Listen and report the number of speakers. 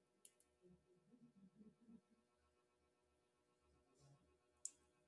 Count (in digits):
0